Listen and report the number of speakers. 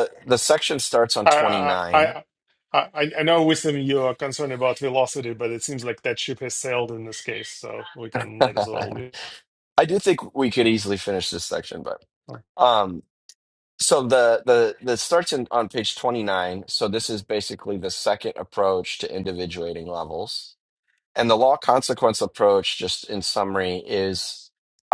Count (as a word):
two